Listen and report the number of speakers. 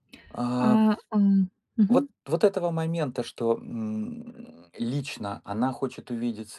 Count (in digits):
2